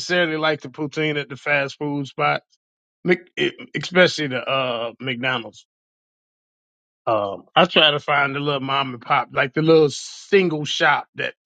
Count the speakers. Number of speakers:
one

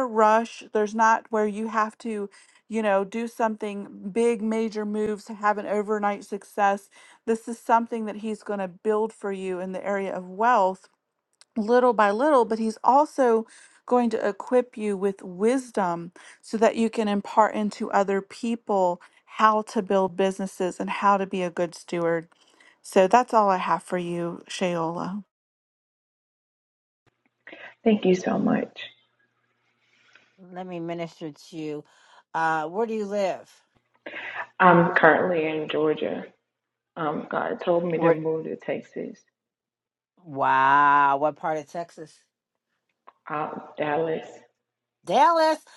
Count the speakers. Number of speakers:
three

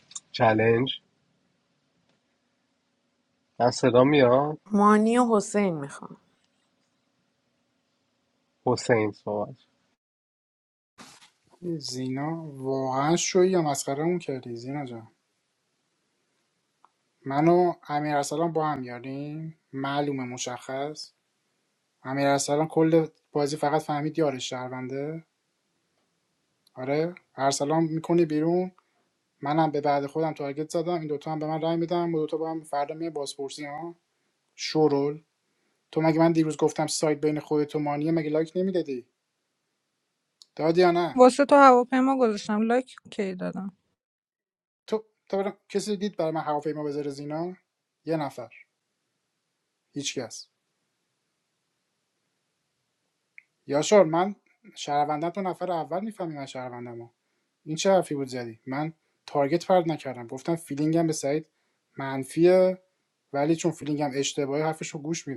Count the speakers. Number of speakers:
four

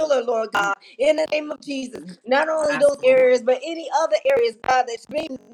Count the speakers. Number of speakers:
one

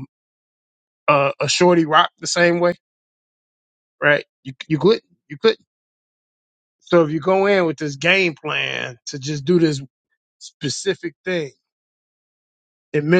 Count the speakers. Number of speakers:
one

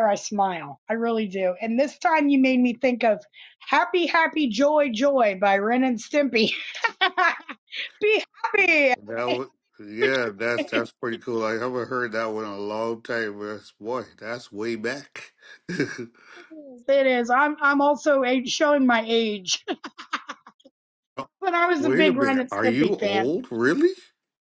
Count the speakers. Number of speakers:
two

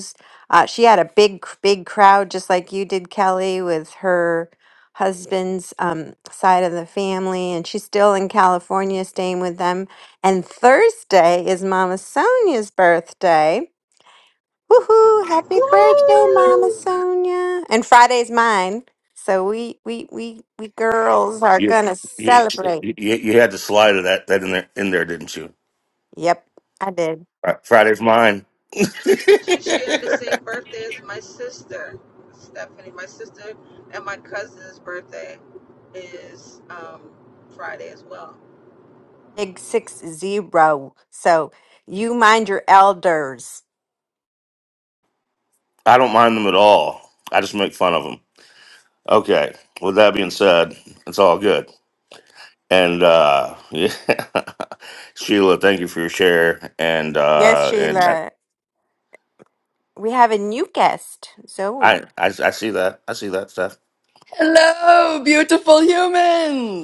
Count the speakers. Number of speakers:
four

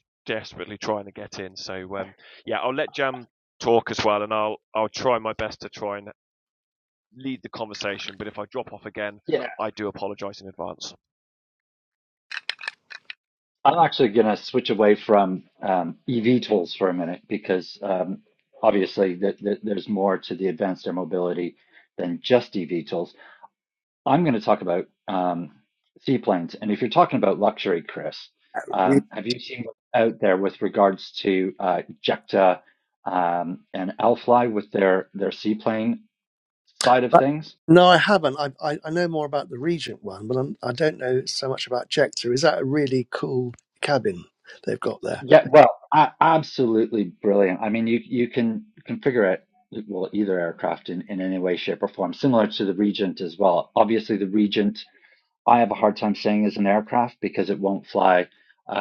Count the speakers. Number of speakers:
three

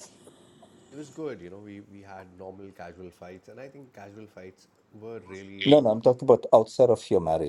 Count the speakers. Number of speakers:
two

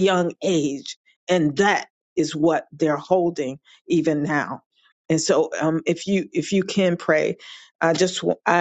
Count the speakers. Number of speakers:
one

